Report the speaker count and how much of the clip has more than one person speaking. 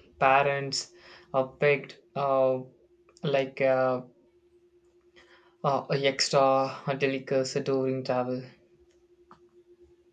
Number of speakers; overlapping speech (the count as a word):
one, no overlap